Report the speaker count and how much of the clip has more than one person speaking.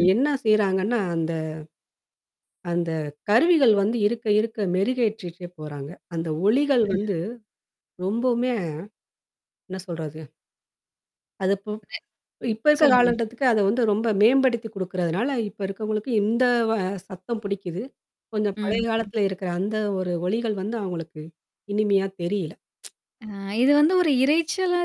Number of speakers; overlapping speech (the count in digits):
2, about 4%